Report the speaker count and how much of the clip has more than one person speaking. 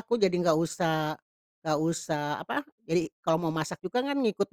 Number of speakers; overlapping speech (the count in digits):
1, no overlap